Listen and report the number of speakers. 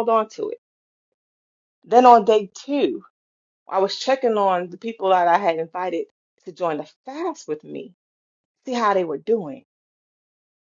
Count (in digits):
1